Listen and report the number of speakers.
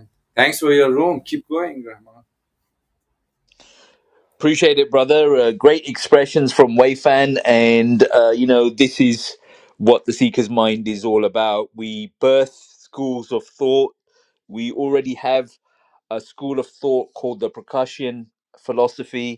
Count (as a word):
two